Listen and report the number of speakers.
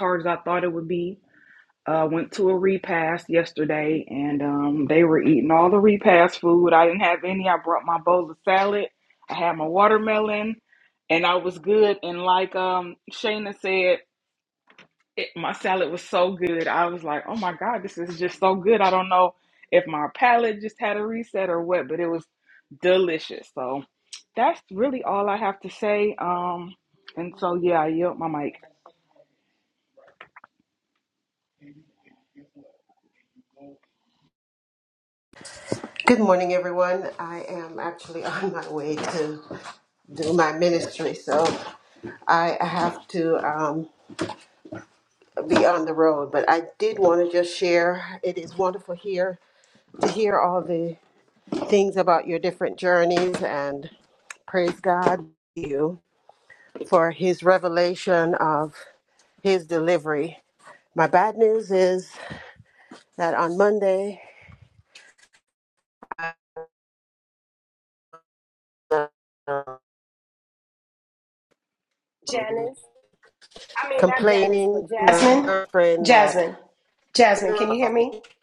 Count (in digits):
3